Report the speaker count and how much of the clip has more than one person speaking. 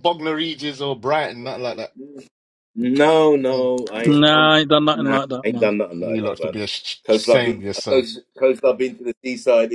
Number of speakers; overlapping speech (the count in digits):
3, about 31%